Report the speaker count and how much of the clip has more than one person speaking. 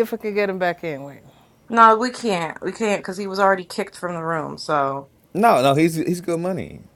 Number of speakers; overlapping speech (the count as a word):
three, no overlap